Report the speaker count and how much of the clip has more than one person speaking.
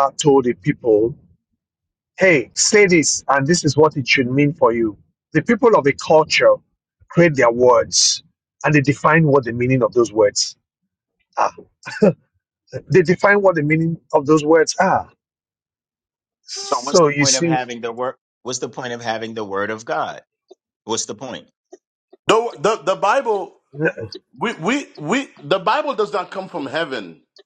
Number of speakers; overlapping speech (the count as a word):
three, about 3%